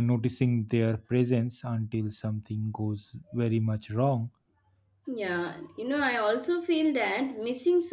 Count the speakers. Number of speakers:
2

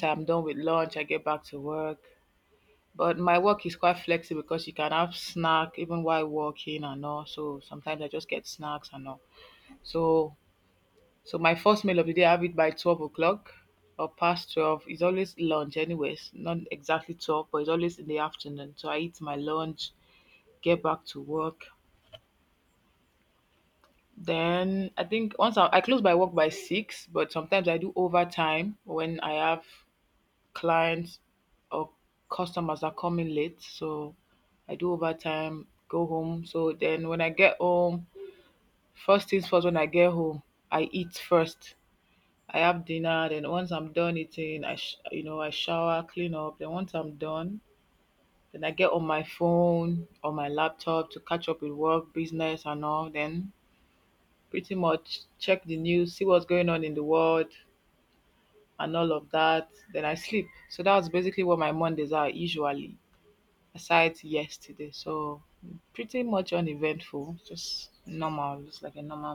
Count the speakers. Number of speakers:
1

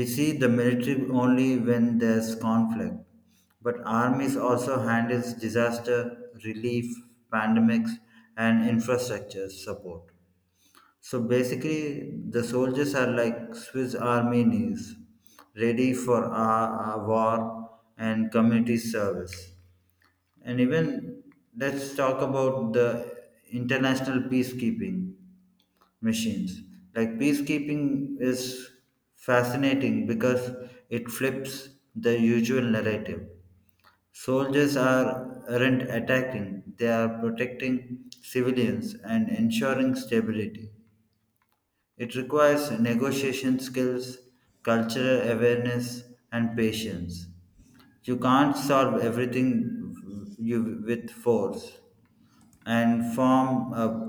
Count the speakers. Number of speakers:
1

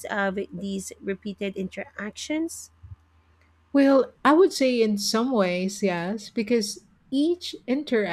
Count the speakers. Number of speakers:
2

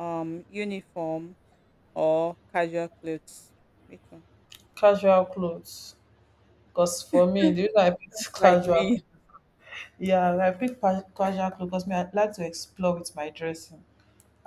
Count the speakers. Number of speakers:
2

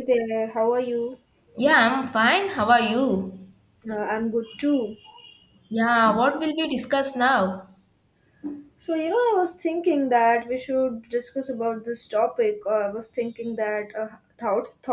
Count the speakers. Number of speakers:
2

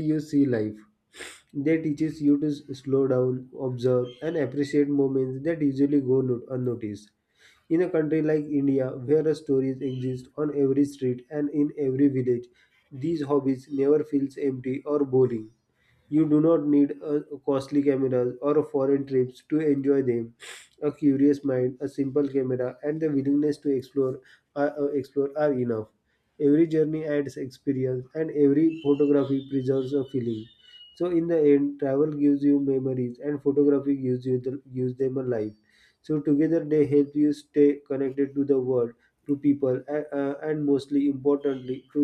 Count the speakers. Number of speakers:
1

